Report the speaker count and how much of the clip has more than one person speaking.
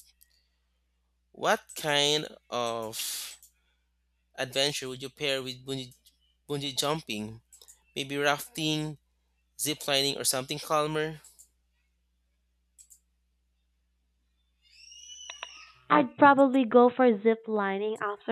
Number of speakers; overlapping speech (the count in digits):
2, no overlap